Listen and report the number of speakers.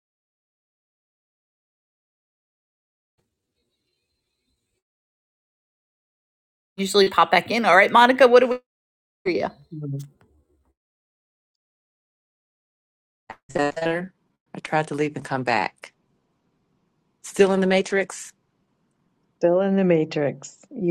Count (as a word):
three